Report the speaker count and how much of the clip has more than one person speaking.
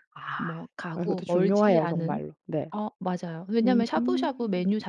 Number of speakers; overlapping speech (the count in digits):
2, about 35%